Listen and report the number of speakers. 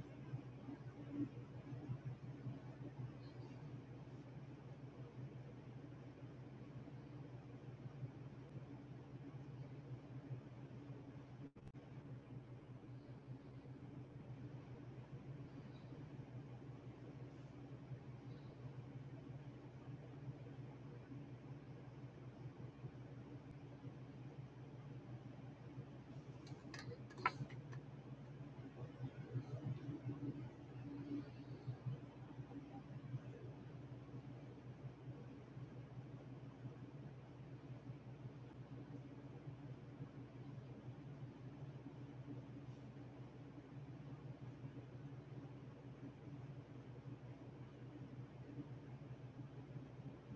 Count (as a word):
zero